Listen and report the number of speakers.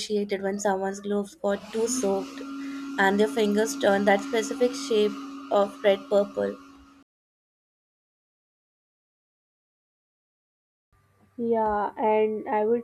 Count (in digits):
2